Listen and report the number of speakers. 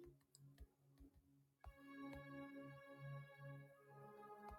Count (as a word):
zero